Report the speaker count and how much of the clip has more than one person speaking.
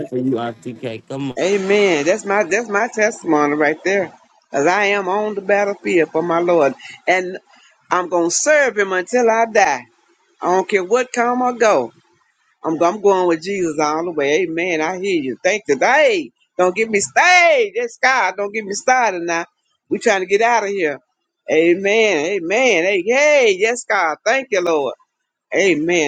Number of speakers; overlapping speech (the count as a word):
two, under 1%